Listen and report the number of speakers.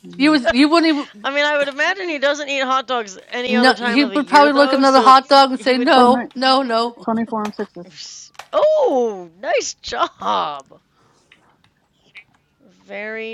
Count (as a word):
three